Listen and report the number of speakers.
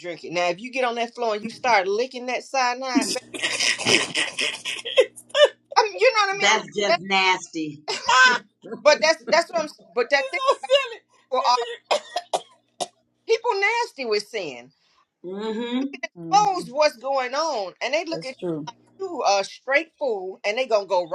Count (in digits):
3